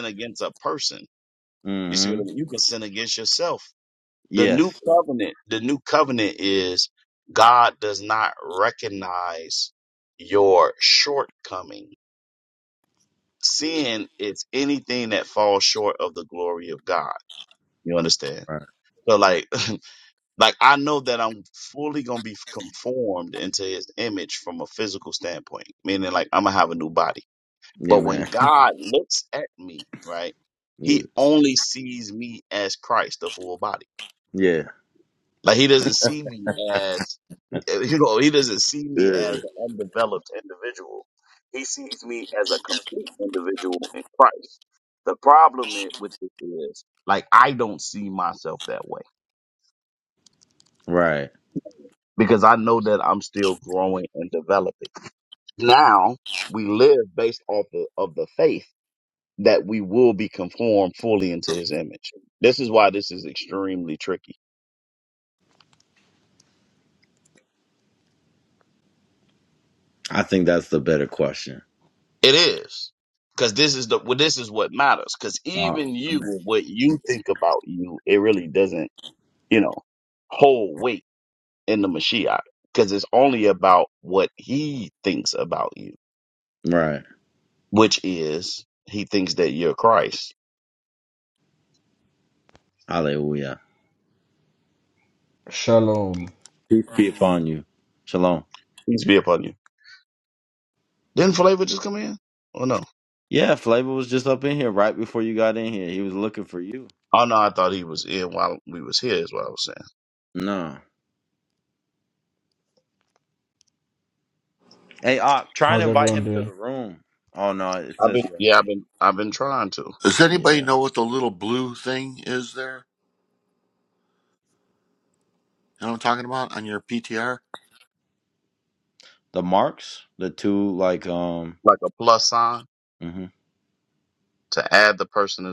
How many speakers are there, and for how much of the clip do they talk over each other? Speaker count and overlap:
4, about 3%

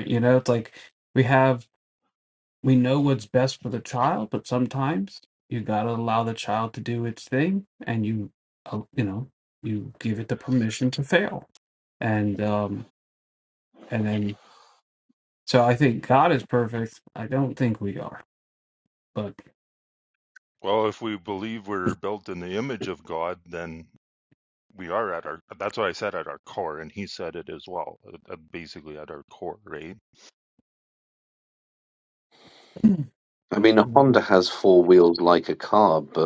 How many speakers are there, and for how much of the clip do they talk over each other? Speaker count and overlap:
3, no overlap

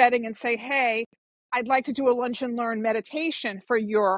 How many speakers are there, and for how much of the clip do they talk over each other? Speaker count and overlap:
1, no overlap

